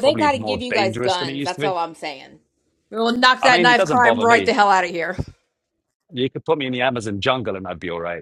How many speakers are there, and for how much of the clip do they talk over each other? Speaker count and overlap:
2, about 35%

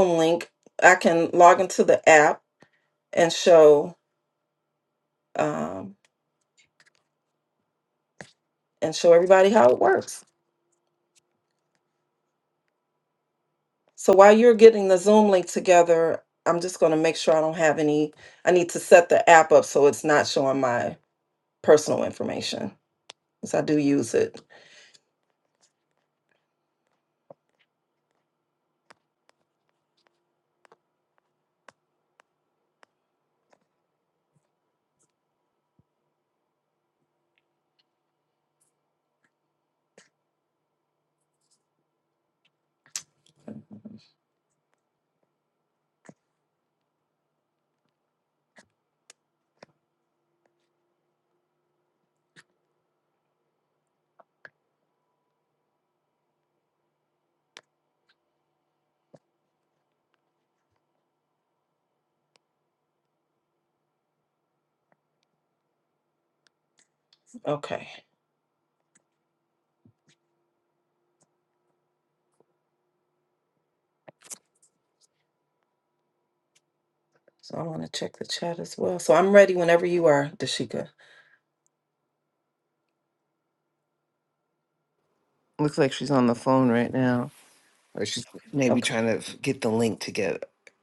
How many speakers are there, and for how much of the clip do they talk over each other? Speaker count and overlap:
2, under 1%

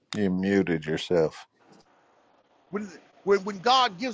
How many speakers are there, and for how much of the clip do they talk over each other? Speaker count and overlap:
2, no overlap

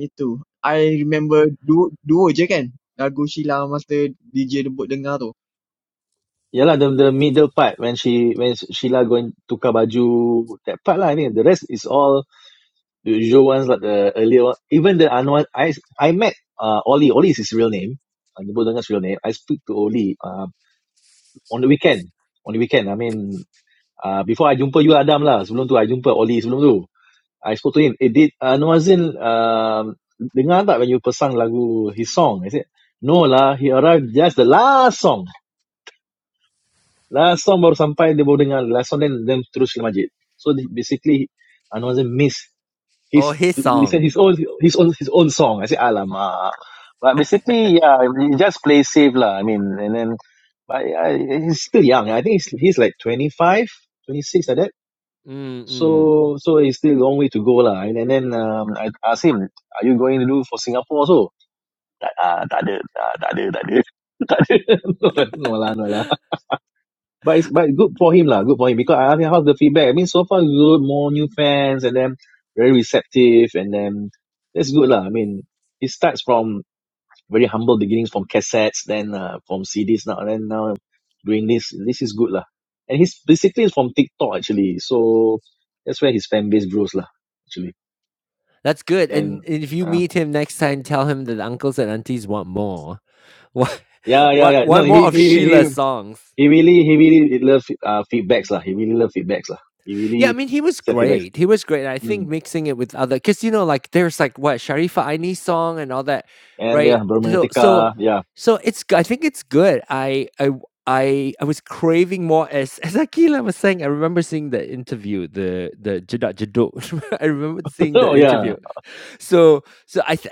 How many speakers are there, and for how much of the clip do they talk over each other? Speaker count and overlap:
3, about 5%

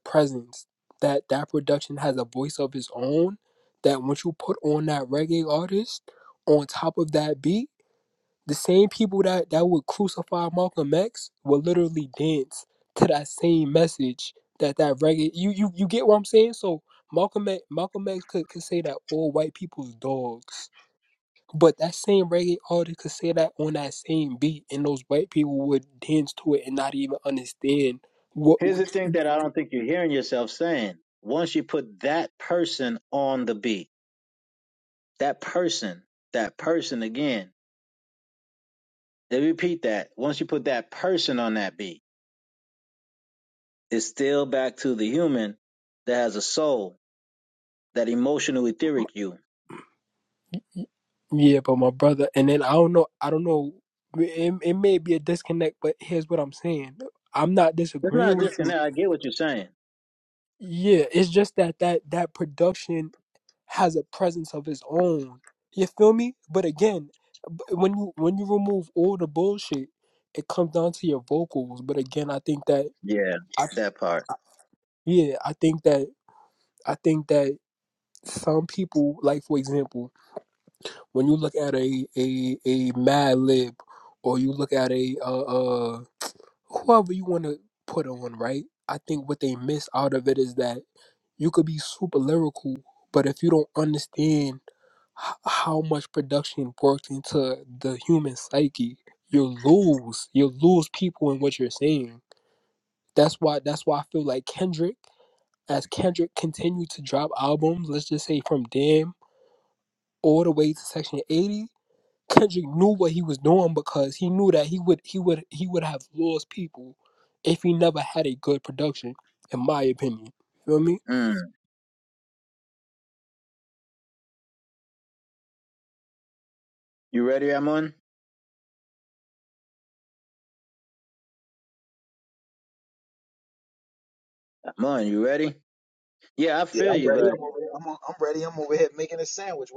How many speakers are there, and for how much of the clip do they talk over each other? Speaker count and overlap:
3, about 1%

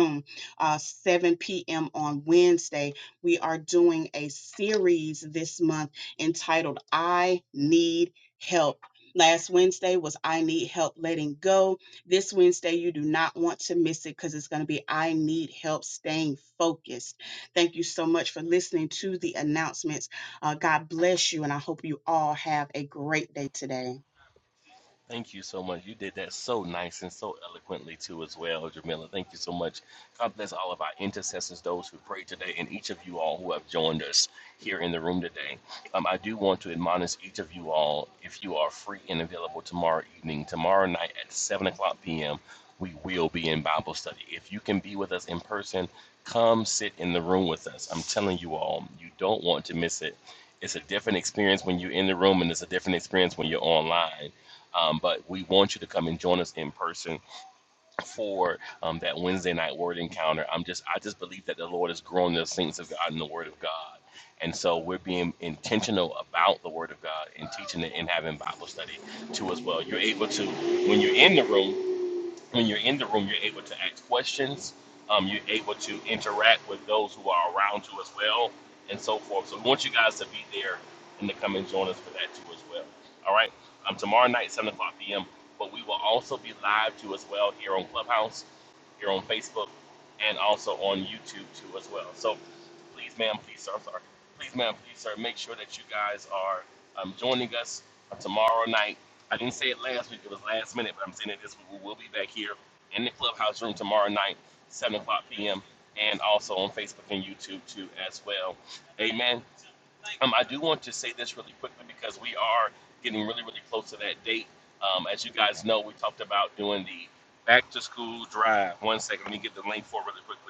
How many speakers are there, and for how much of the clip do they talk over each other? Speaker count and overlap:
2, no overlap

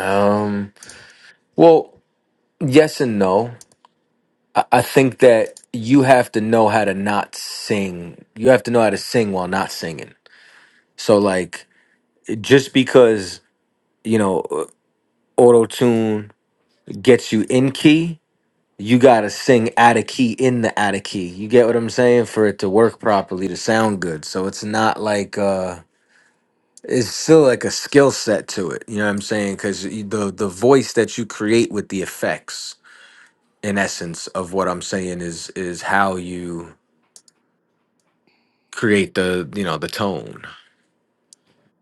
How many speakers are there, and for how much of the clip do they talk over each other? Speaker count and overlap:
1, no overlap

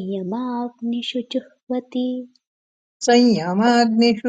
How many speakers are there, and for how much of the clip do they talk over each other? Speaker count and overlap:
2, no overlap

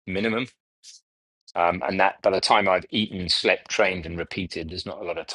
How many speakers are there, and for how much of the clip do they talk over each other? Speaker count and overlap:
1, no overlap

